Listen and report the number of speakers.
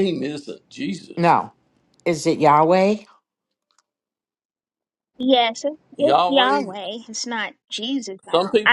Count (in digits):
3